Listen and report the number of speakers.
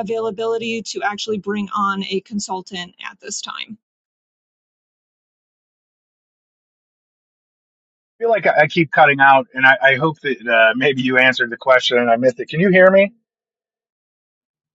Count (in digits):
2